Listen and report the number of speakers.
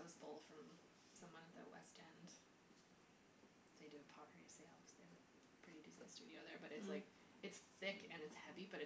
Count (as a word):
one